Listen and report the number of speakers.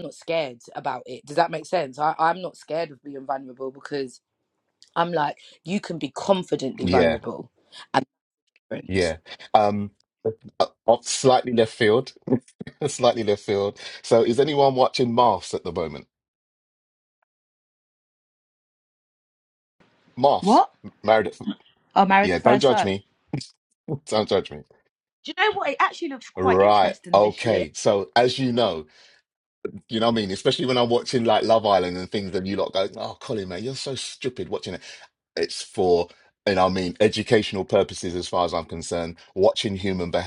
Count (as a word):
three